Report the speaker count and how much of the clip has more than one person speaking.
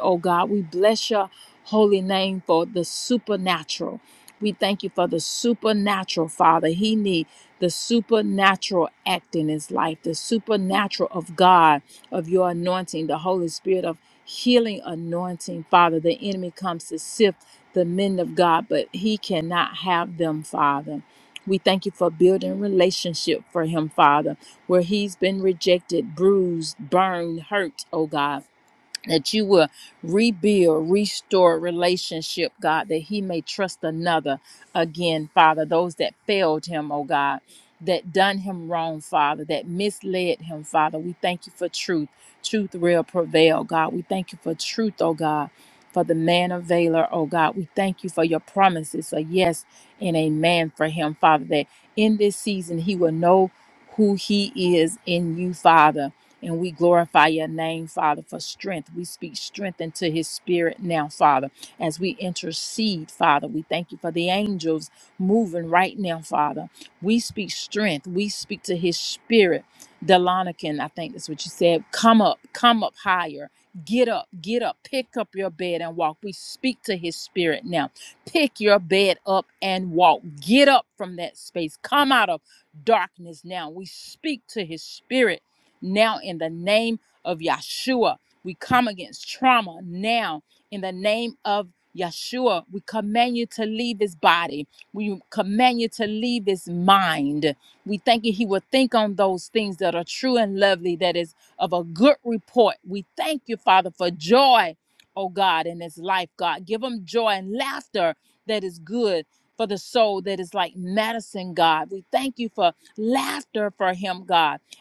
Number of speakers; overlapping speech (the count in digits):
1, no overlap